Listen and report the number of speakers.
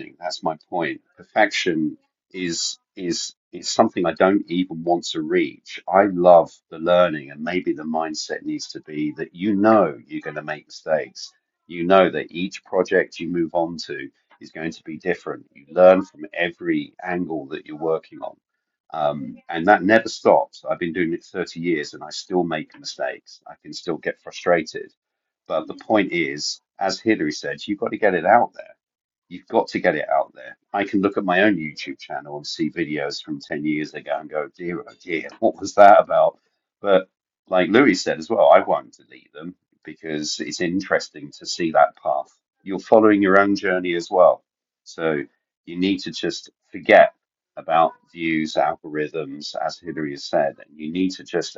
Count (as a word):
one